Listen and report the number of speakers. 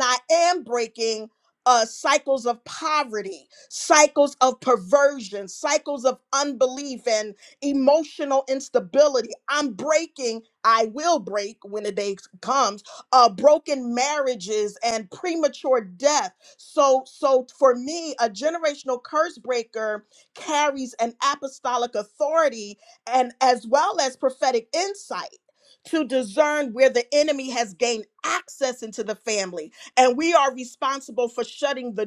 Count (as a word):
one